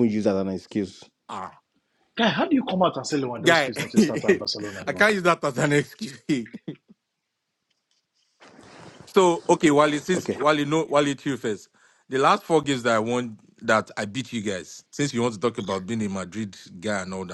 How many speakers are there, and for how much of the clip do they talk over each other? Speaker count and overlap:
3, about 5%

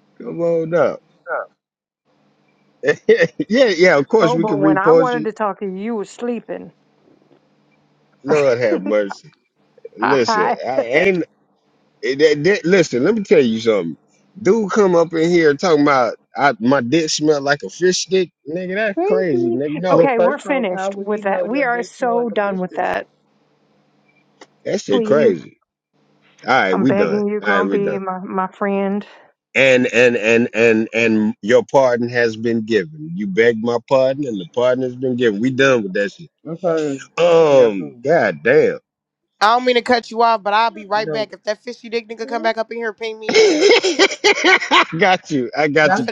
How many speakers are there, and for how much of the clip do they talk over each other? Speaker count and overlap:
4, about 19%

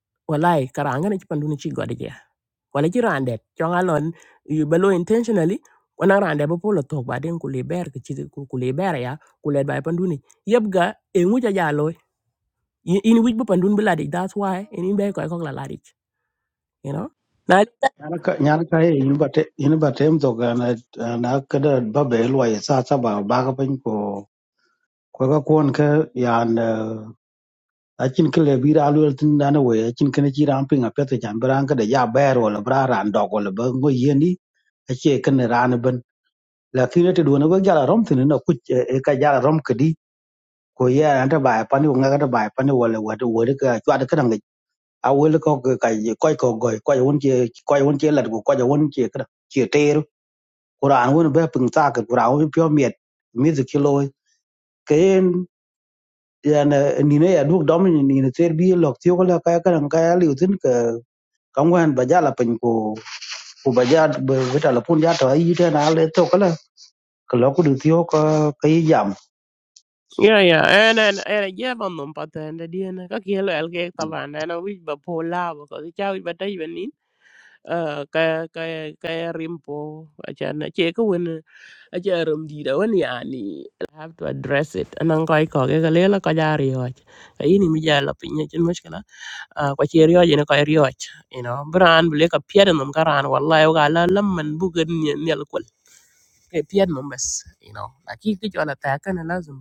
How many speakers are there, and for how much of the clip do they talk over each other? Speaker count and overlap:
2, no overlap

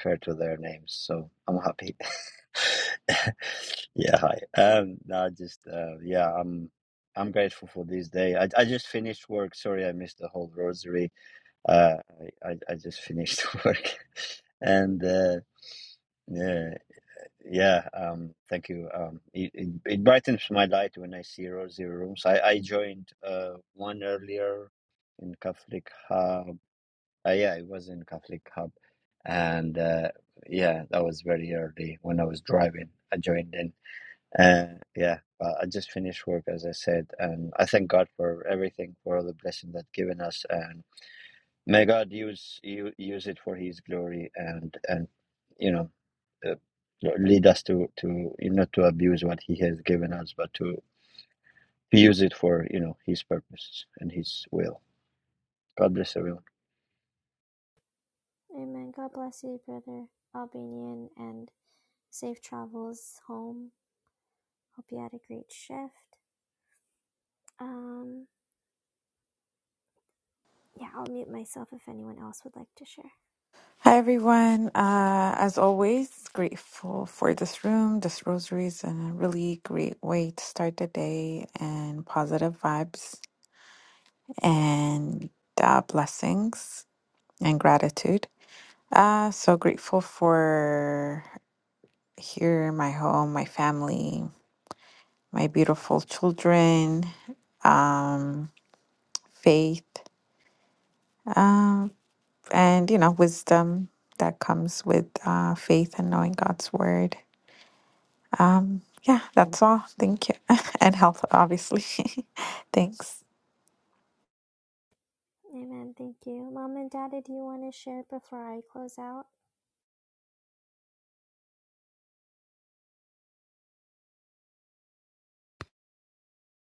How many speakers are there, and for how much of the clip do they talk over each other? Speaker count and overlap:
3, no overlap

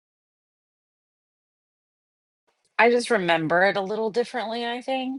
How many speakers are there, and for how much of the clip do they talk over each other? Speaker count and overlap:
1, no overlap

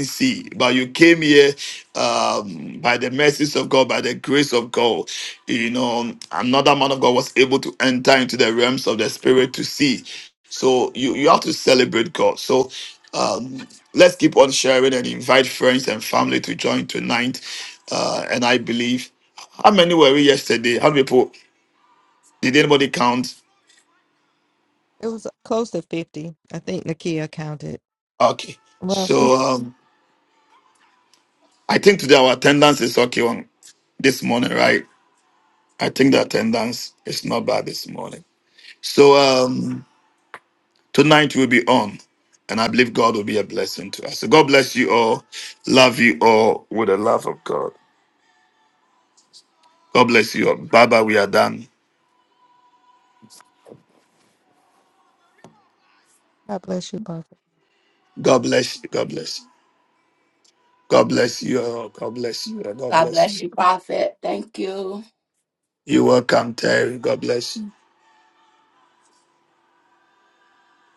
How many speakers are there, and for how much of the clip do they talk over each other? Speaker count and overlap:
3, about 1%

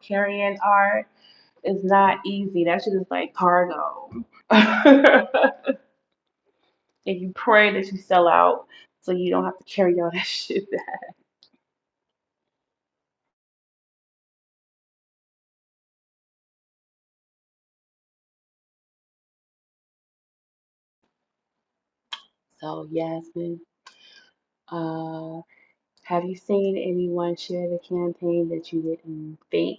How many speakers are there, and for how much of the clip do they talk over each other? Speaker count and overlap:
1, no overlap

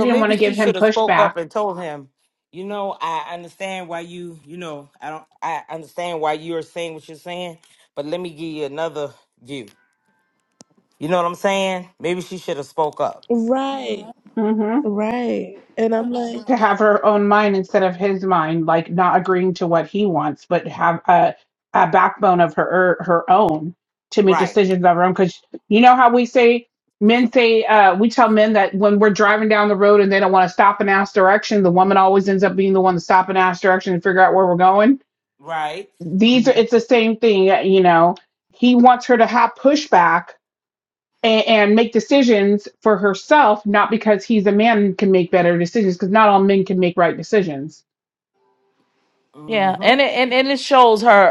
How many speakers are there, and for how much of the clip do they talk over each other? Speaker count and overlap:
4, about 5%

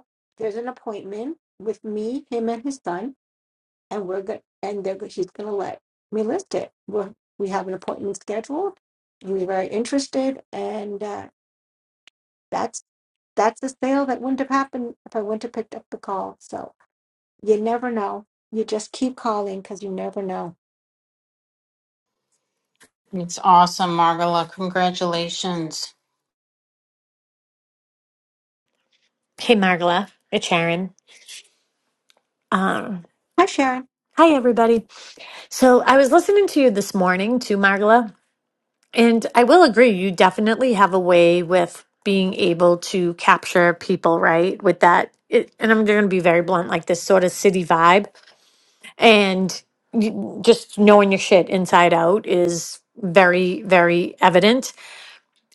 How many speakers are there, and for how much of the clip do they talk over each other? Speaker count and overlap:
3, no overlap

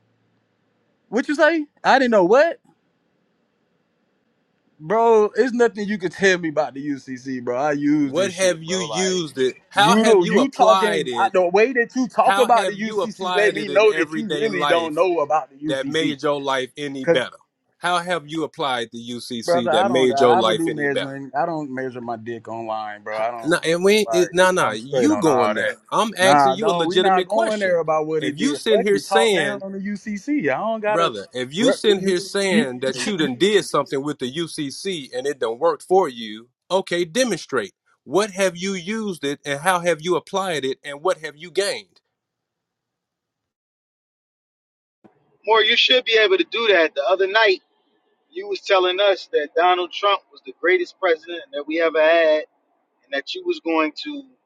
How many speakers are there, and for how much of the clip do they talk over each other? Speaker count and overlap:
3, about 25%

